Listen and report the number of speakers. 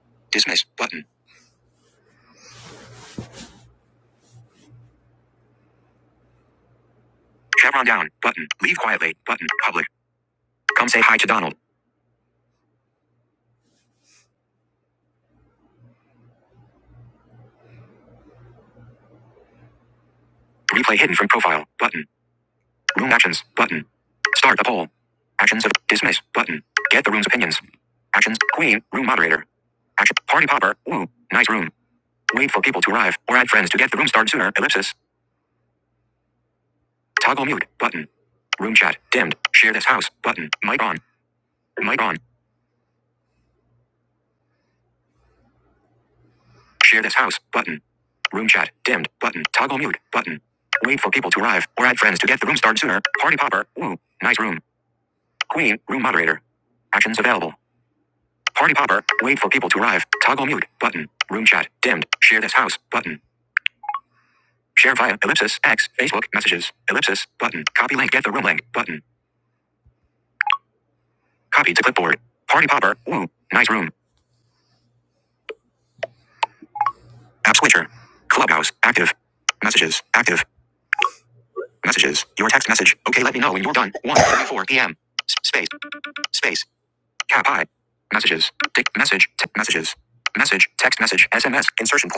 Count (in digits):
1